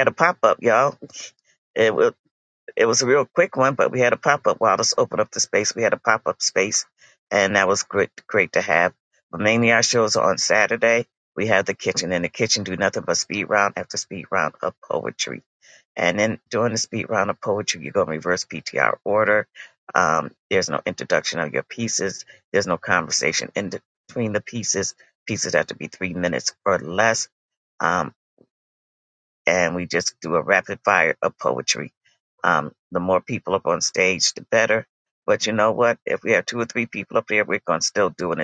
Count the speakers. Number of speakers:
one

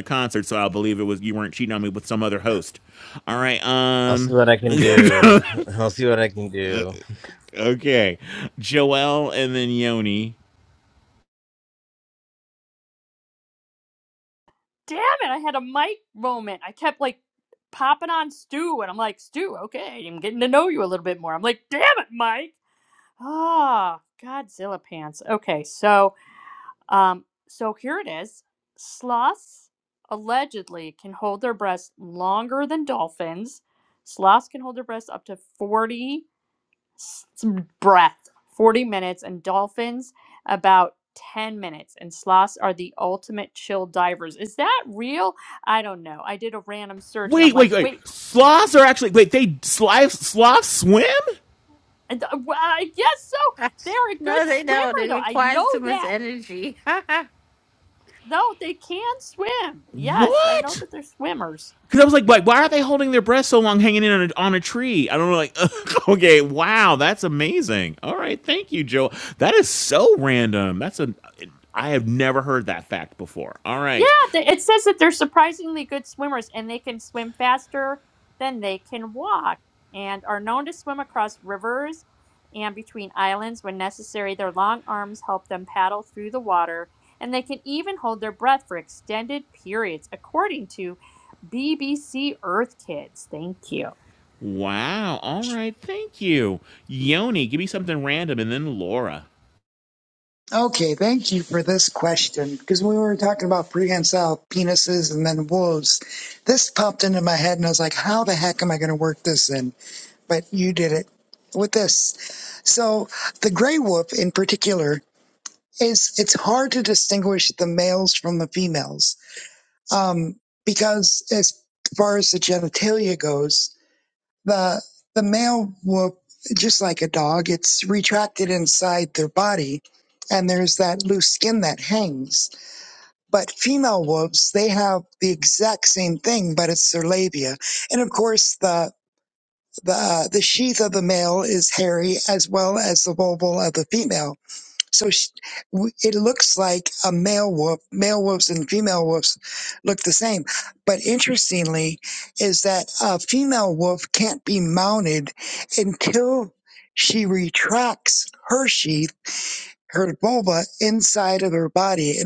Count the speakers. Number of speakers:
five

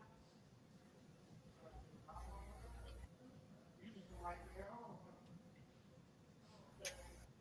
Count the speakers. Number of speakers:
zero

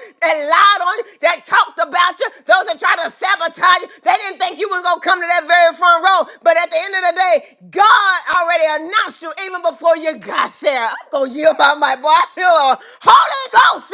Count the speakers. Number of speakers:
one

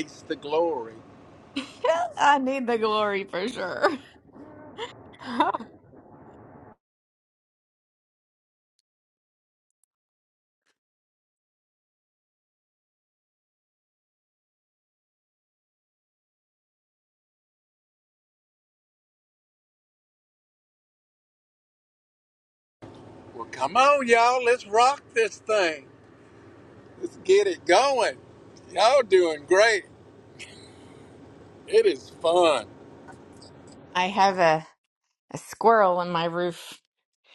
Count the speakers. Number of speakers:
two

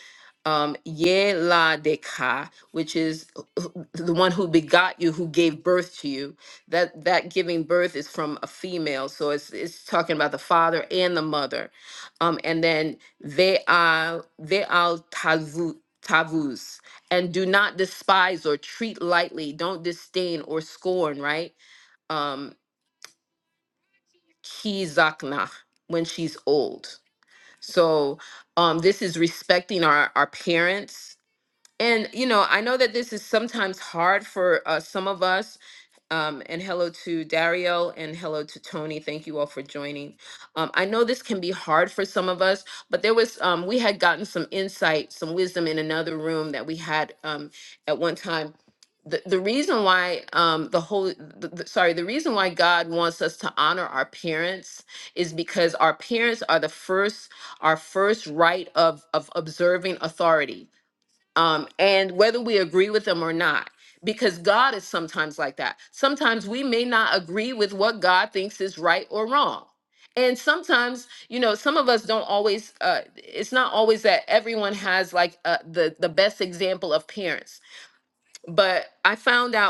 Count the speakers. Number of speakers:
one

